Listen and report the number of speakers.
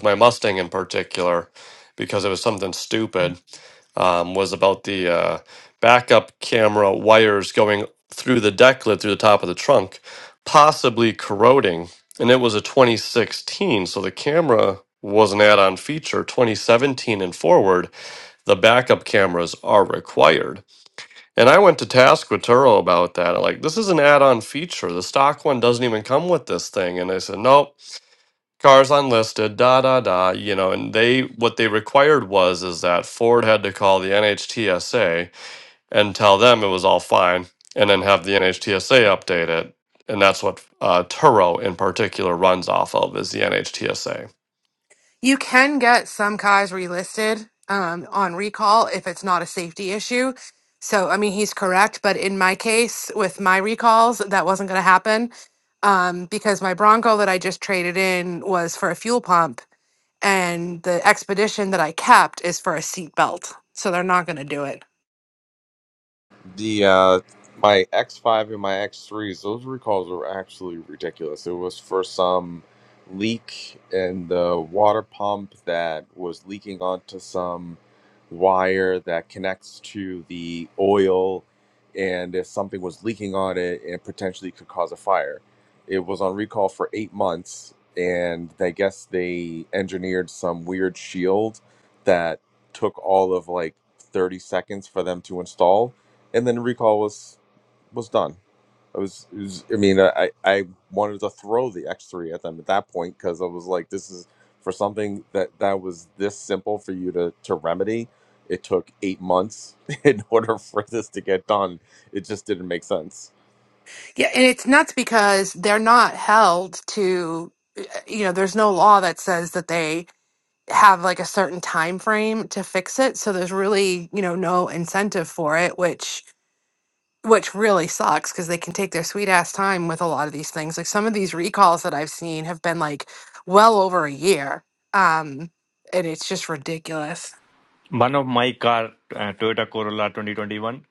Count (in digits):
4